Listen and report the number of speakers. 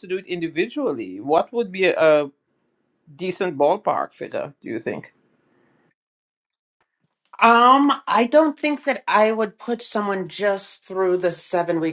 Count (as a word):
two